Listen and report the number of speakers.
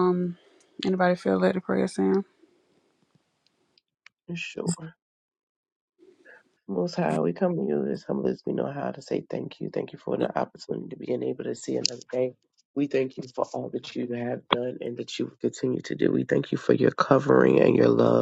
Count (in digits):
2